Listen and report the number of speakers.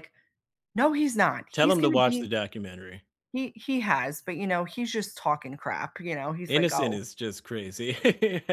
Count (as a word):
two